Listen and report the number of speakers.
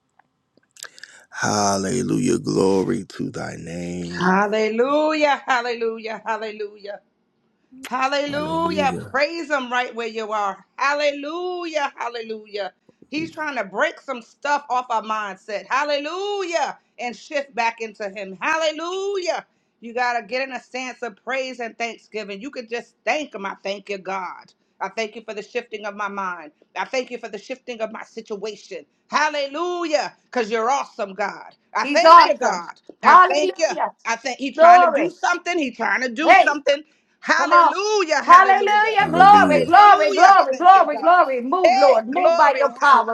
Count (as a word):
three